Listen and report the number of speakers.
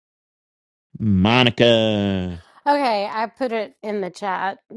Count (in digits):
2